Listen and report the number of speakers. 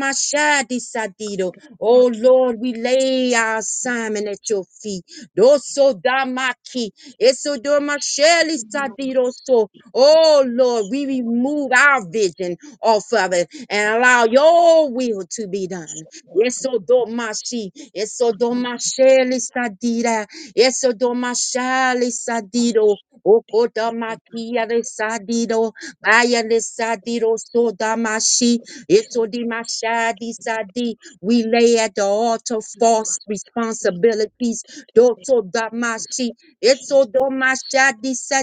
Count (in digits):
1